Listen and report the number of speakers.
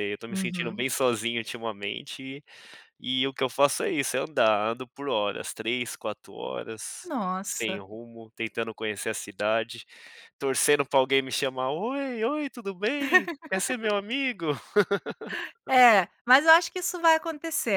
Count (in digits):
2